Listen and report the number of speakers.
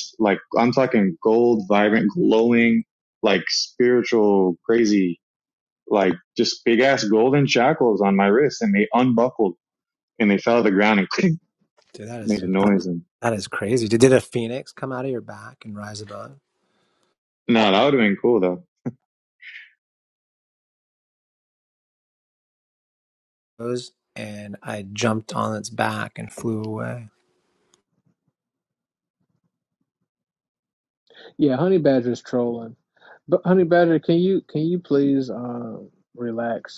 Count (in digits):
3